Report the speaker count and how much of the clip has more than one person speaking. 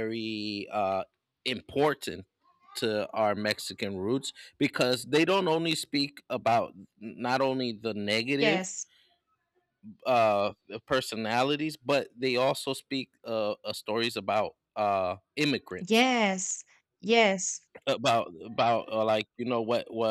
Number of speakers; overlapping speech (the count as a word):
two, about 2%